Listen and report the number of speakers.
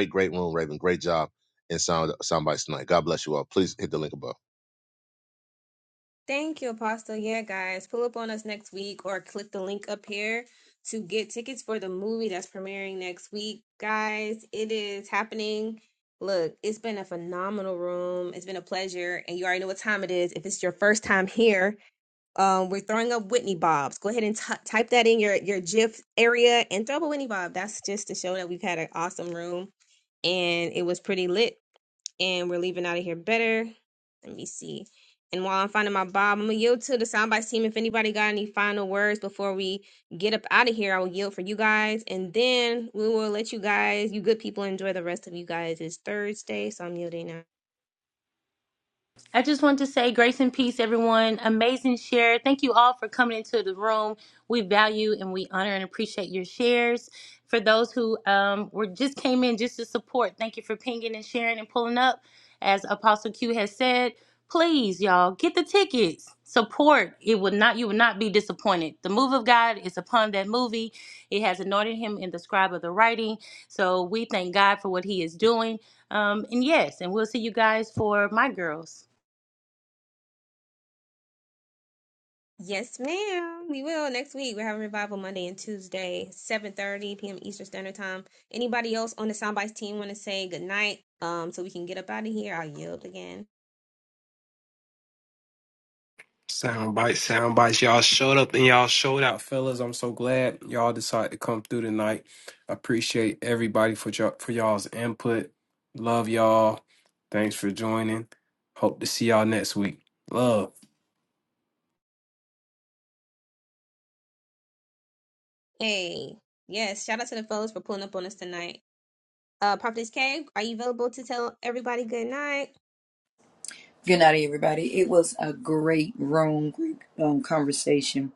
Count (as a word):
five